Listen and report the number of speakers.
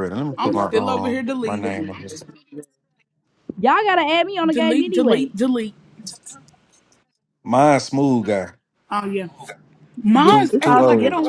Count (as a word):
three